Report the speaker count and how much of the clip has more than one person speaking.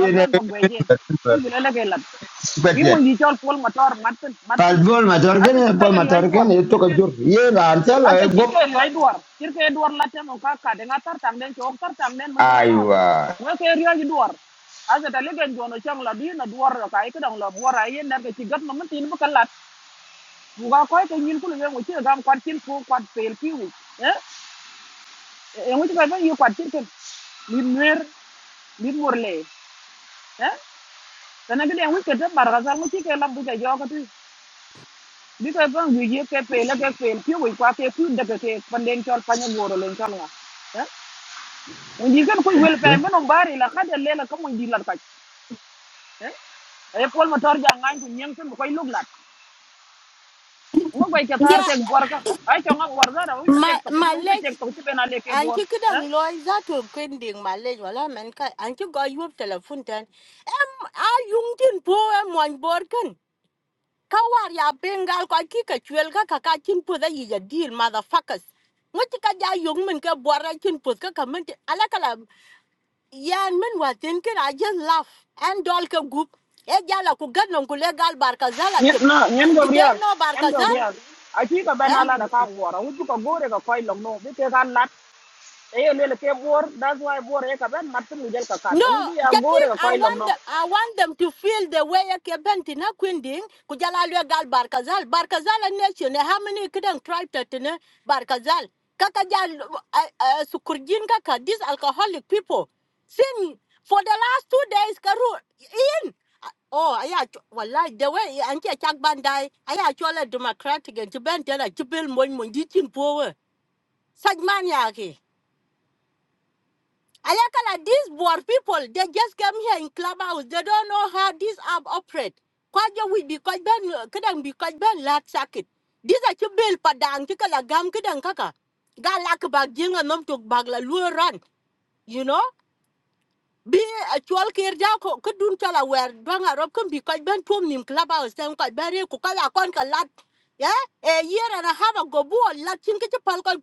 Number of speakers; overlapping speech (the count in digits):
3, about 5%